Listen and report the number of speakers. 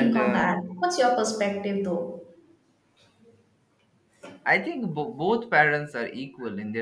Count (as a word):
two